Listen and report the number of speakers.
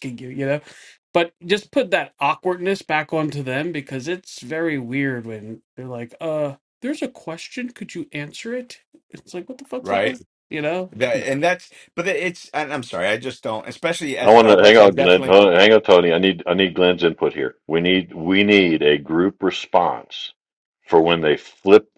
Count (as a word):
three